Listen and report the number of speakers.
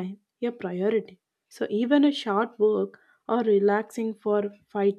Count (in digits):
1